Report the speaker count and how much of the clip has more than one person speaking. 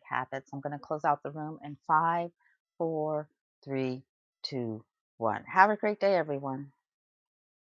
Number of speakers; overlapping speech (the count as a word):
one, no overlap